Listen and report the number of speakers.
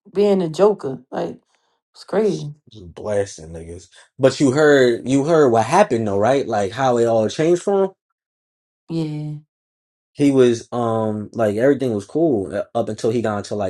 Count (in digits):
2